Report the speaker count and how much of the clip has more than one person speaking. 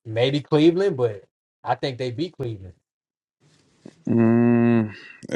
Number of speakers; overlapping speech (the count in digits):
2, no overlap